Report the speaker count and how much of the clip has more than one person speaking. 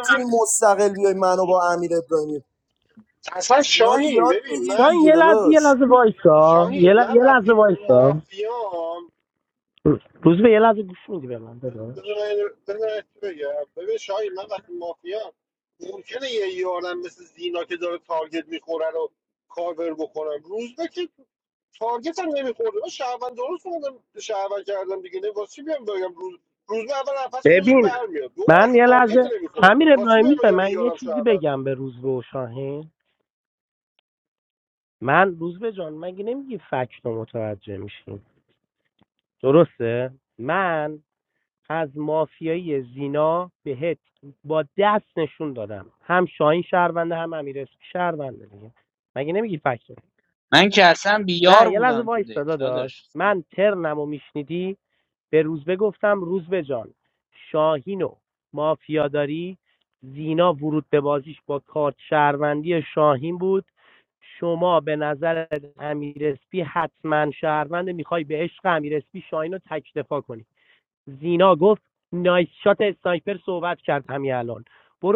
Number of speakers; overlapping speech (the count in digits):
4, about 12%